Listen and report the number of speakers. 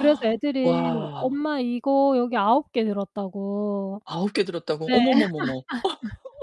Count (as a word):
two